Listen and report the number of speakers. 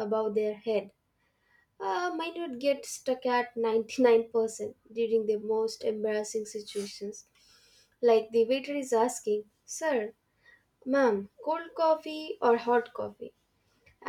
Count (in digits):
1